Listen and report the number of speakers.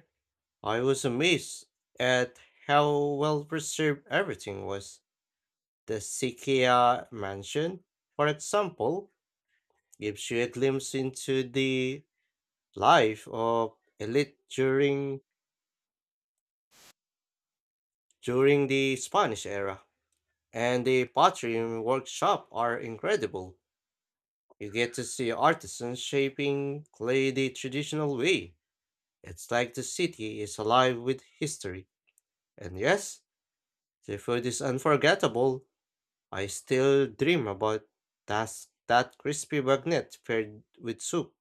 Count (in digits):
1